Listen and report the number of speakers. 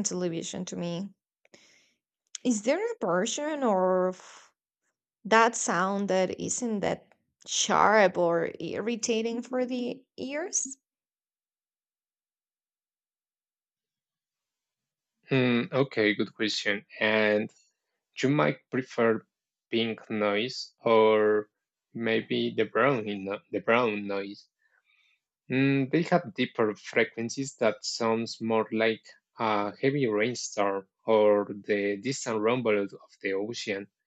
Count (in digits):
2